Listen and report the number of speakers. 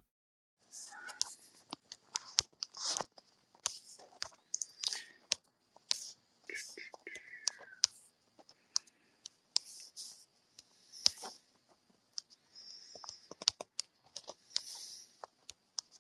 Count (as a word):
zero